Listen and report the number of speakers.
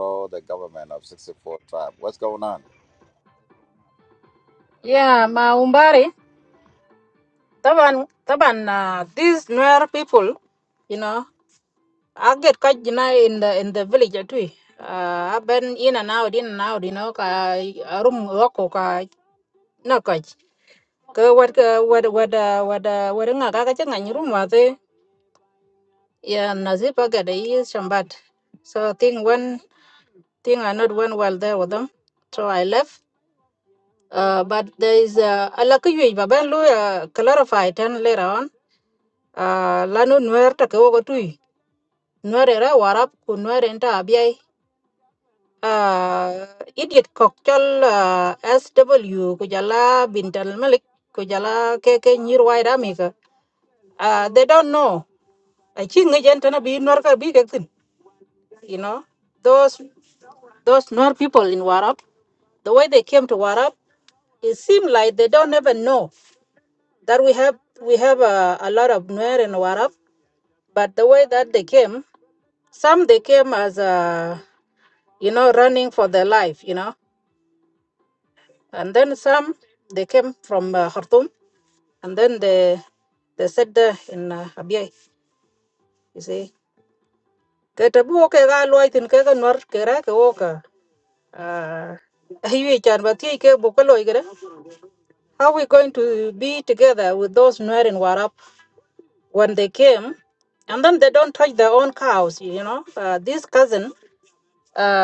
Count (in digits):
2